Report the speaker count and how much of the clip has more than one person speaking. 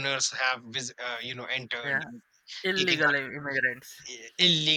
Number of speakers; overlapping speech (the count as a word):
two, about 13%